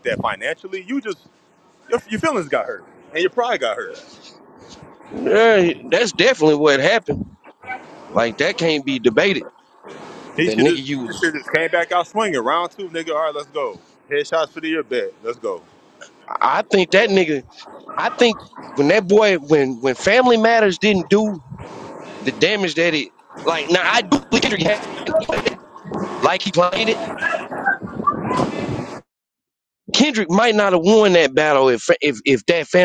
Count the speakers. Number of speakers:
two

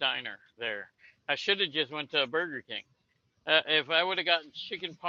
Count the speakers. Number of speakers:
one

